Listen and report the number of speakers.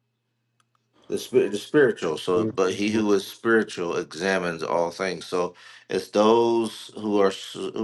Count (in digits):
1